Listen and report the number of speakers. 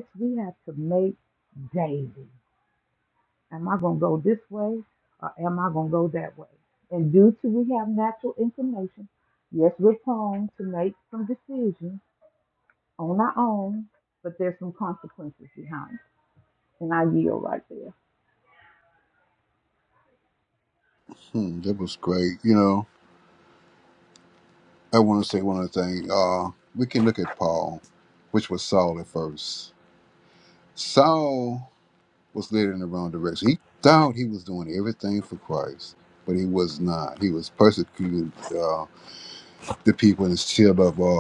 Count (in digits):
2